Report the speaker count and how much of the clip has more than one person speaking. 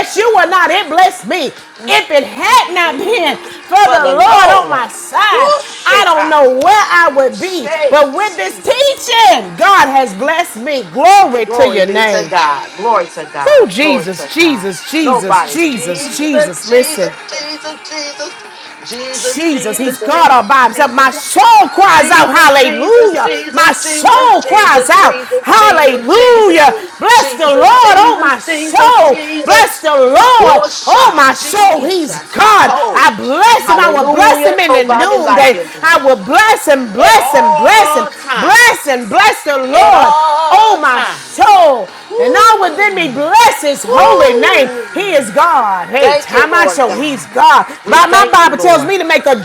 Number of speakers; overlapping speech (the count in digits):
2, about 50%